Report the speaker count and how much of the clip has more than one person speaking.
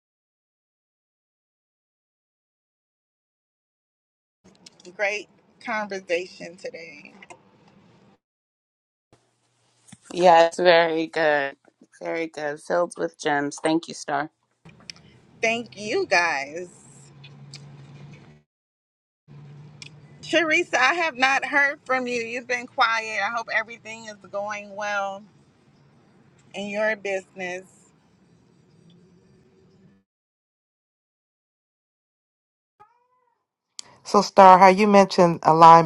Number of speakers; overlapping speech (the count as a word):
three, no overlap